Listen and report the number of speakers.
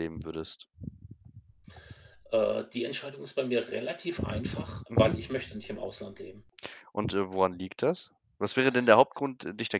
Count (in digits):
2